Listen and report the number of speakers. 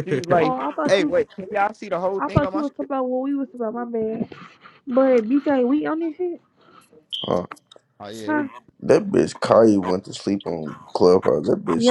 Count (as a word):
three